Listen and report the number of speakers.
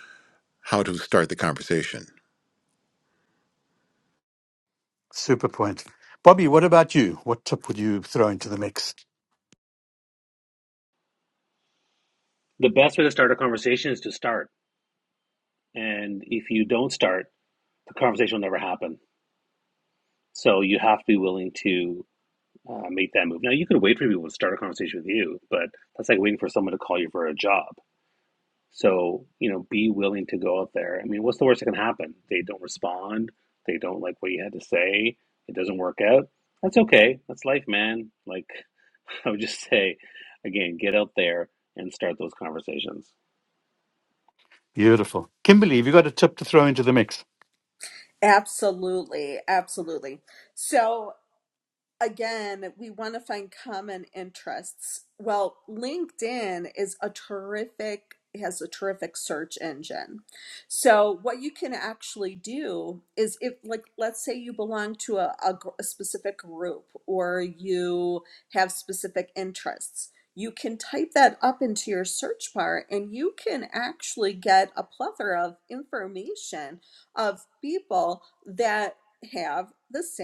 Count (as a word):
four